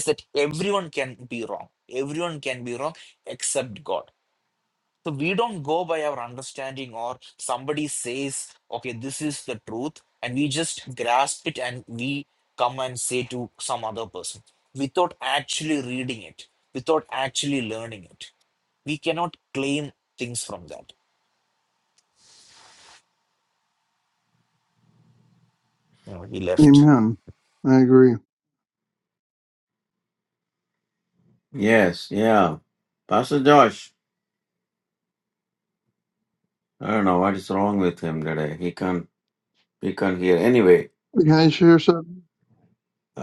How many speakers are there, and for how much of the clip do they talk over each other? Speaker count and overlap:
3, about 1%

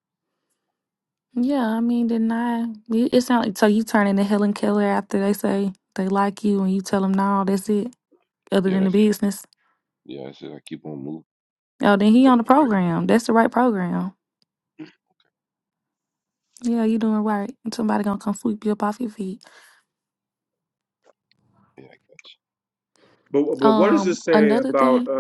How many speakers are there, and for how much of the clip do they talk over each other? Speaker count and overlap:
3, about 8%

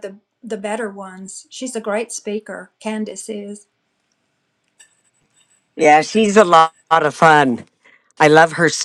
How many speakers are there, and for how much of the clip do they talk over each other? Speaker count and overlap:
2, no overlap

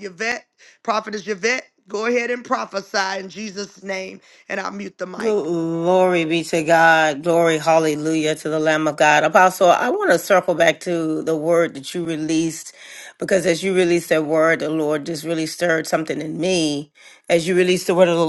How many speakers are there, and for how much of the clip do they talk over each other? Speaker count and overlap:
2, about 1%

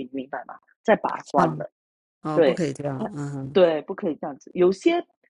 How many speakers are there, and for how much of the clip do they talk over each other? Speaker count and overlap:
2, about 12%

